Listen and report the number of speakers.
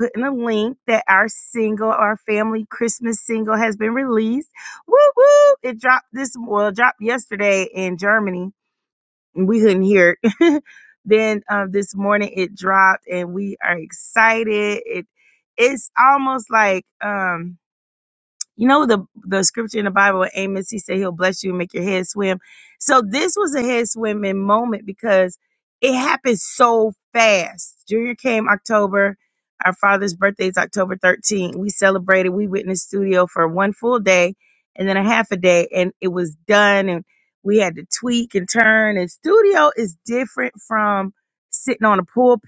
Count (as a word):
one